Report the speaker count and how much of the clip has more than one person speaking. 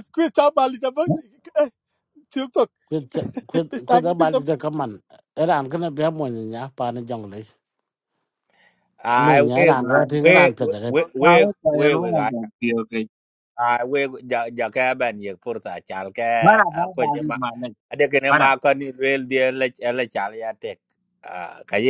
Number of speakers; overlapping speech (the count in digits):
4, about 15%